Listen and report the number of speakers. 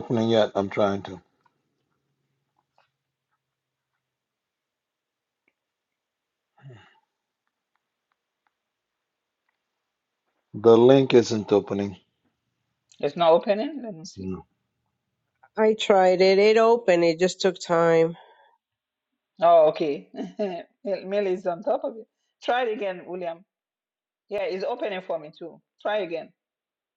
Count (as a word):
three